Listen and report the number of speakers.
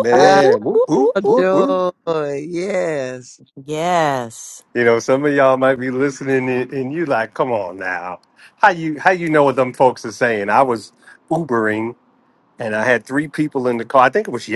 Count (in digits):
3